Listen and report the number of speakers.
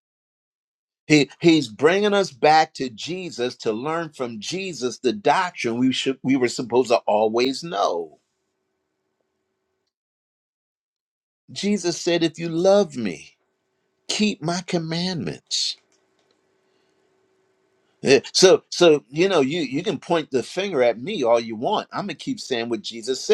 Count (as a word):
one